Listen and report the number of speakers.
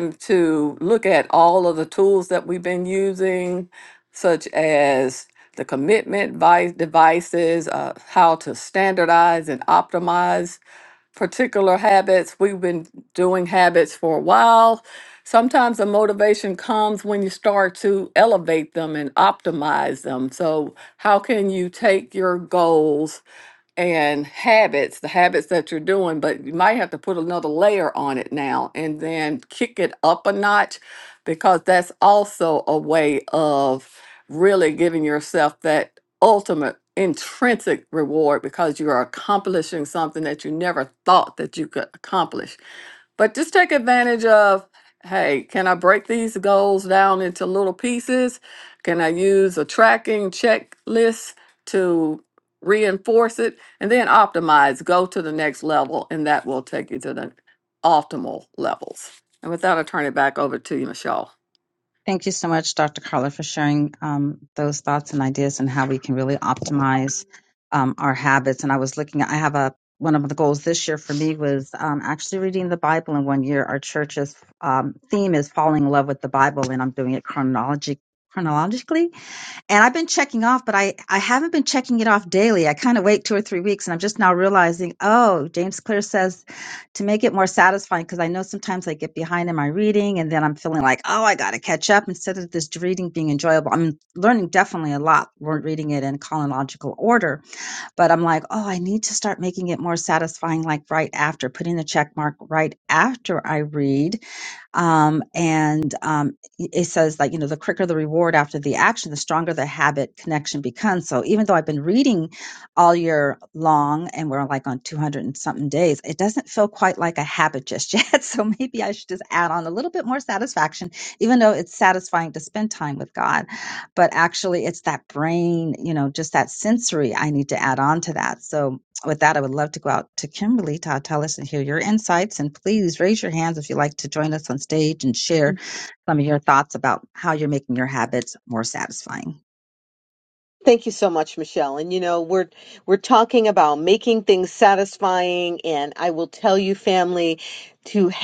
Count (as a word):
three